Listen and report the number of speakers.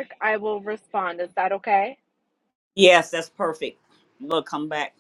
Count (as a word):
two